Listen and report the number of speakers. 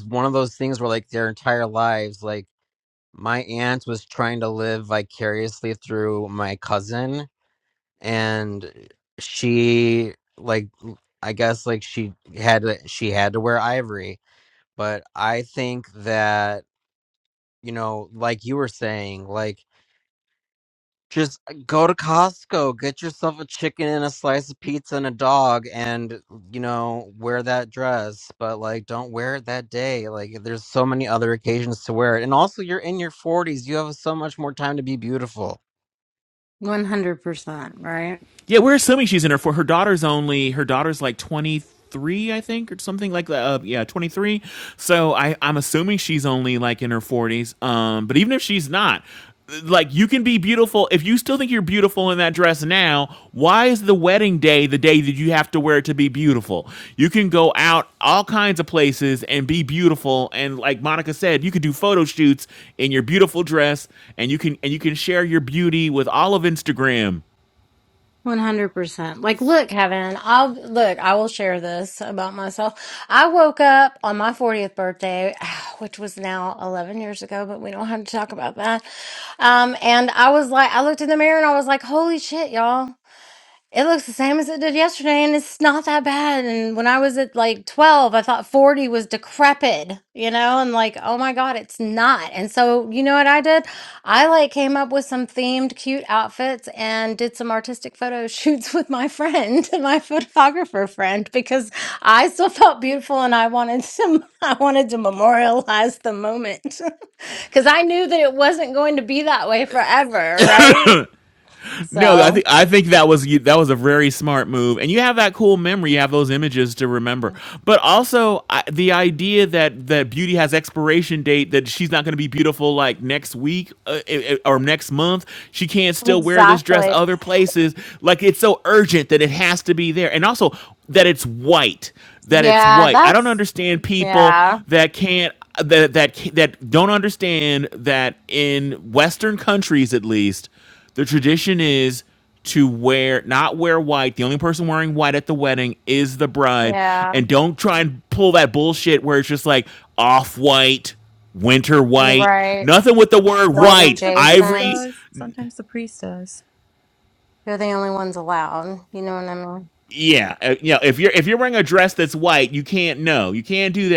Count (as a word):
four